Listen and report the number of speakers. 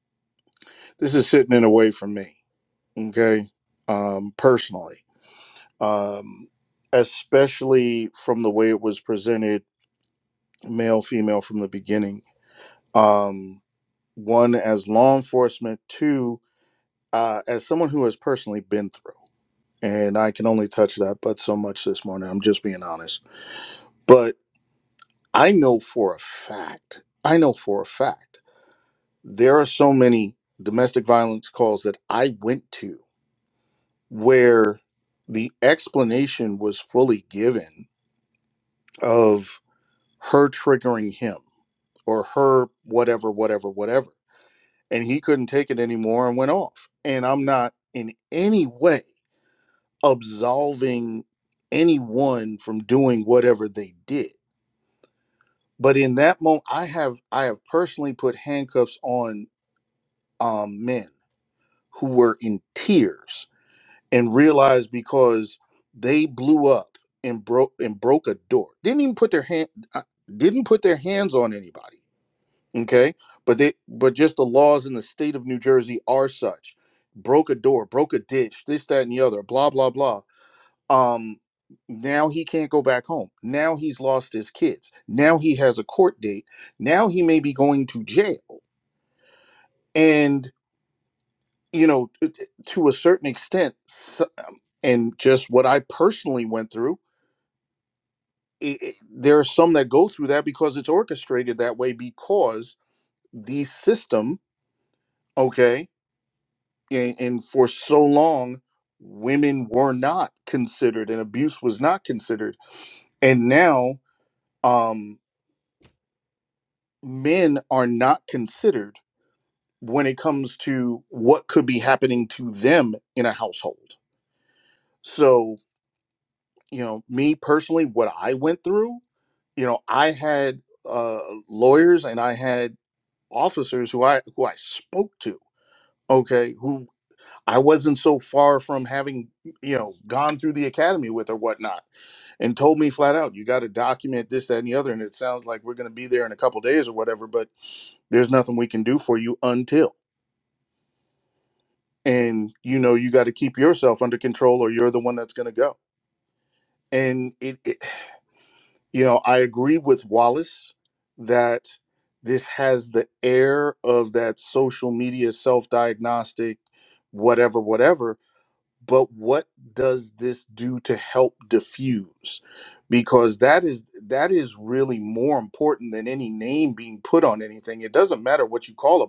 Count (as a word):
one